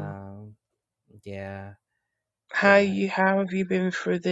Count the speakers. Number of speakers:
2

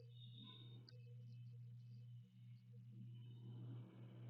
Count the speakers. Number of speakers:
0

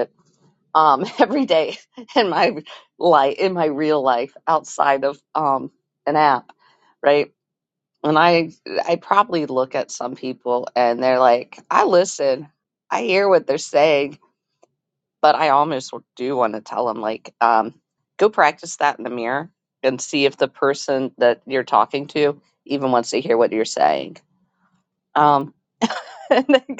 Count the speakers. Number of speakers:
1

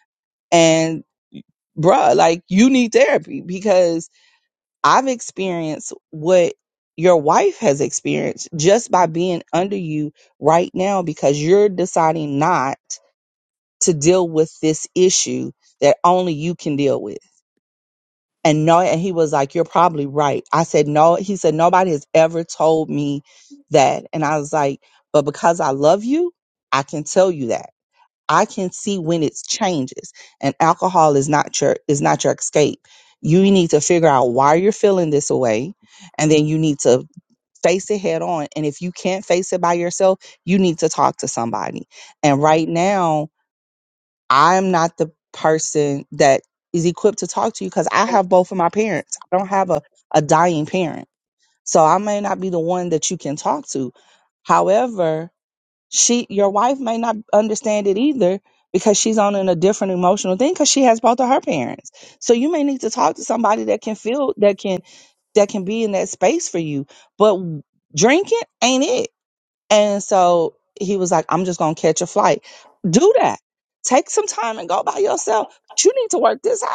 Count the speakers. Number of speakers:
1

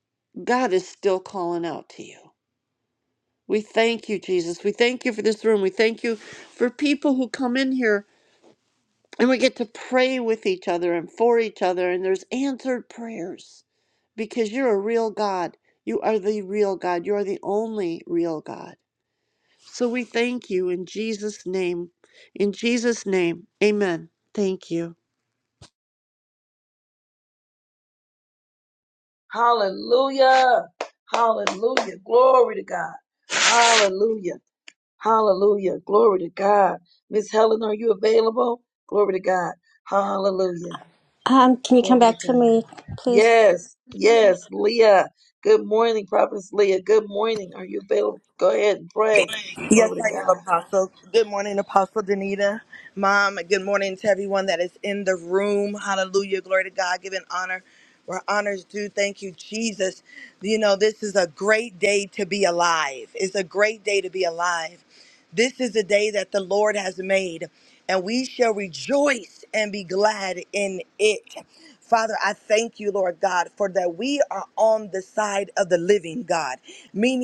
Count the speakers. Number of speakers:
4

